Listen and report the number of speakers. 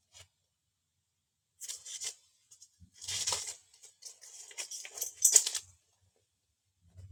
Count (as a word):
zero